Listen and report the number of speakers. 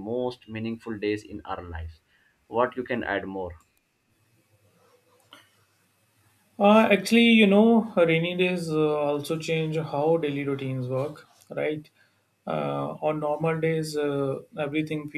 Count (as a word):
two